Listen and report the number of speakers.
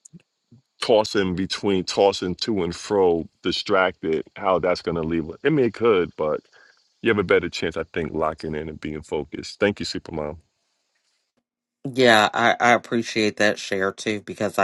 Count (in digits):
2